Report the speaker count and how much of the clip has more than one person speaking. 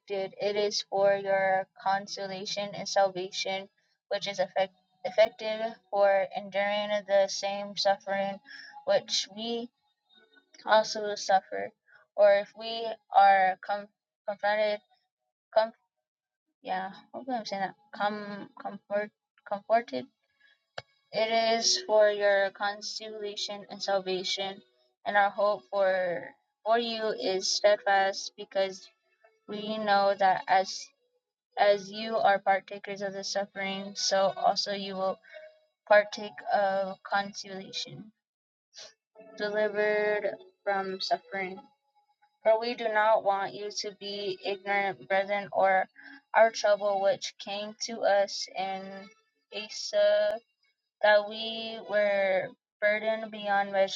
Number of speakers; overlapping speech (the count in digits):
1, no overlap